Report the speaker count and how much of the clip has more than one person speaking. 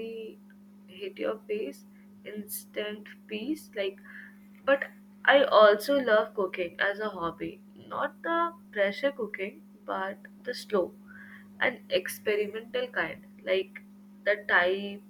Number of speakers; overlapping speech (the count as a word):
one, no overlap